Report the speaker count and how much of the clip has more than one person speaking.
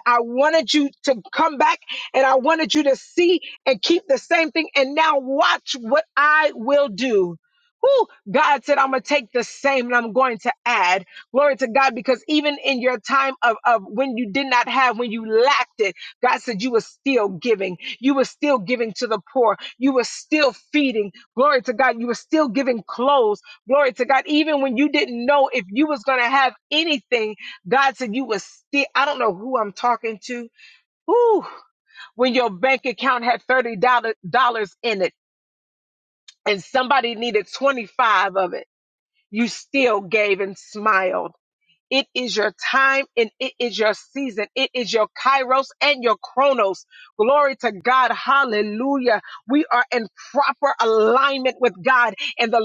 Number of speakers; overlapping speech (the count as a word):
one, no overlap